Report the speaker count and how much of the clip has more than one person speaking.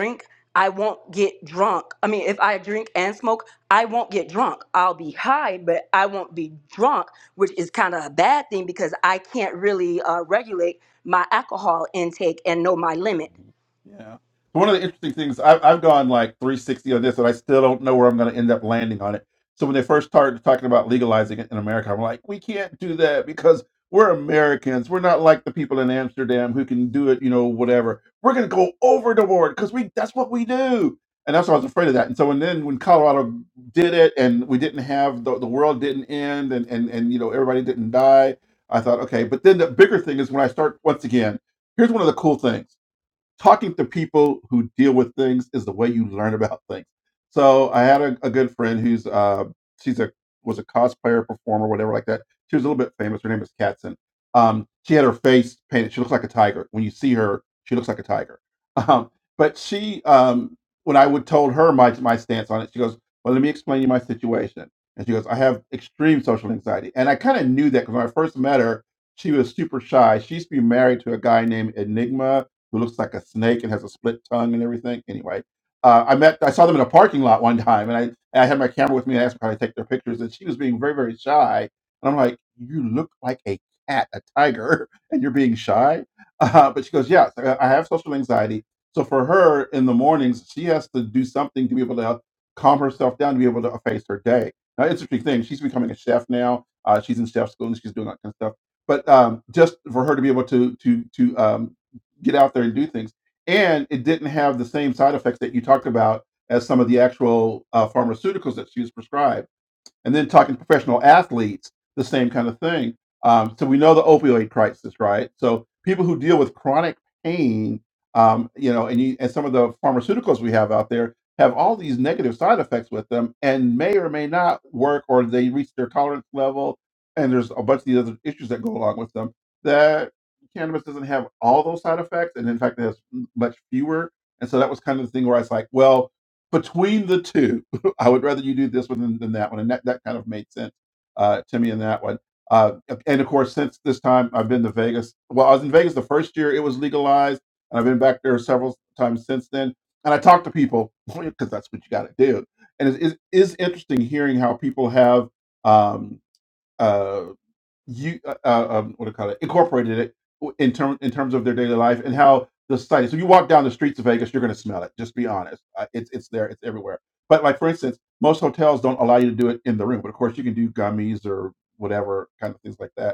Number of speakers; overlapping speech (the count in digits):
2, no overlap